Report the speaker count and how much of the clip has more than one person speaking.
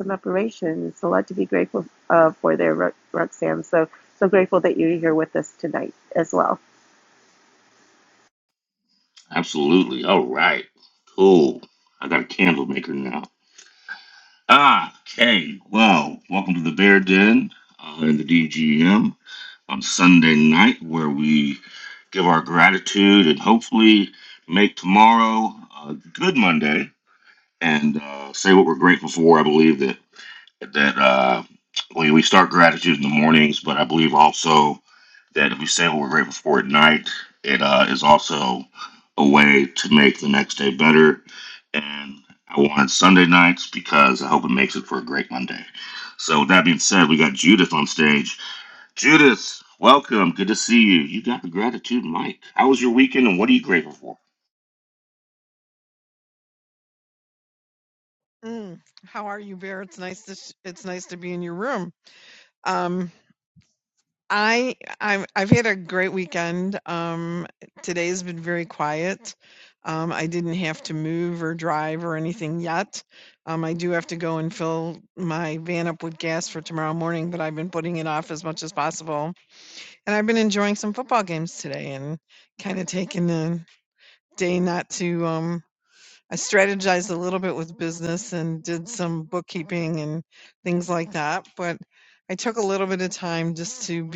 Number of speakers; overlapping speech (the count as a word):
three, no overlap